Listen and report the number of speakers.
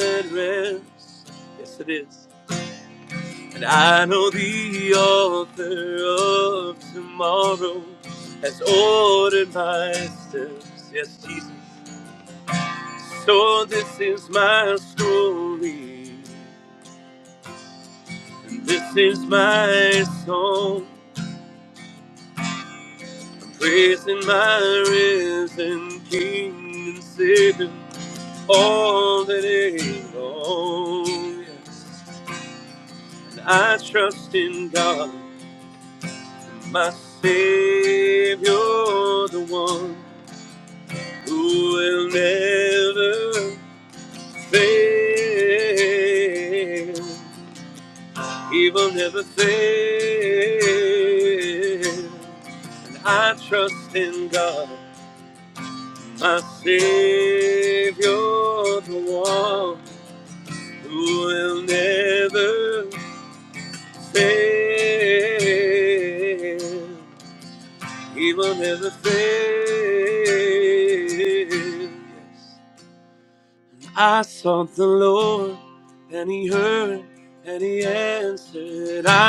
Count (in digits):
1